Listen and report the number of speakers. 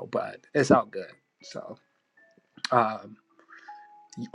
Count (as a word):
one